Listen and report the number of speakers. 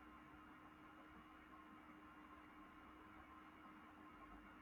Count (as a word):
zero